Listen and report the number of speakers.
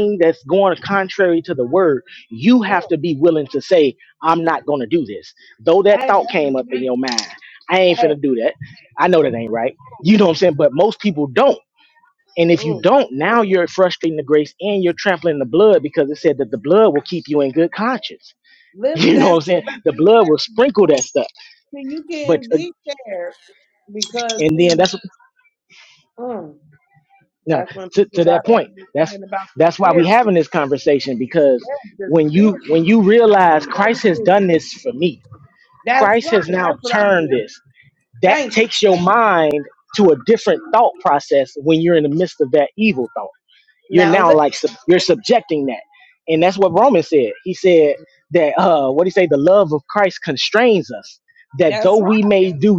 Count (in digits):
2